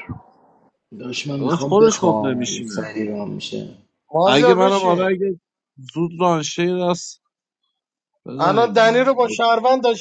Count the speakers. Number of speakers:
three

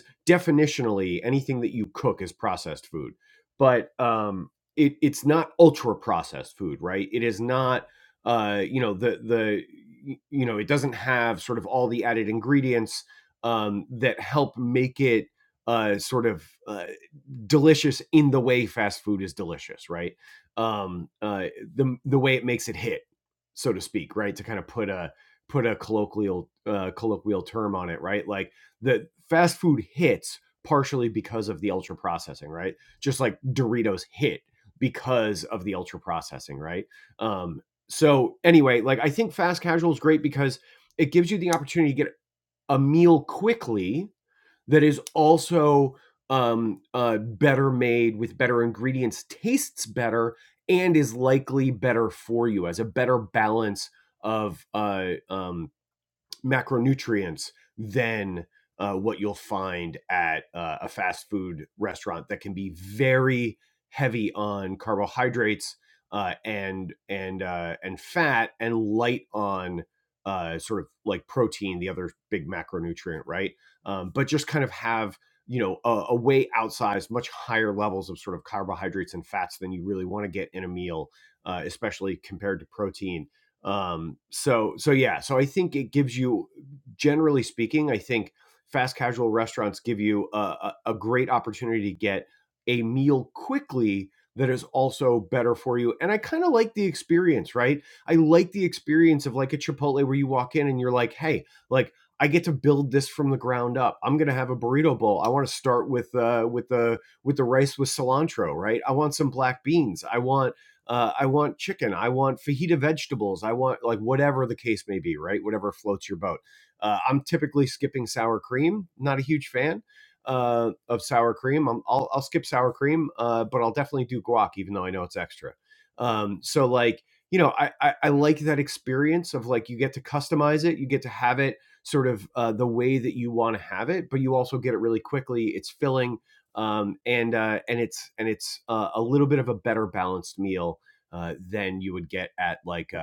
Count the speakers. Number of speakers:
one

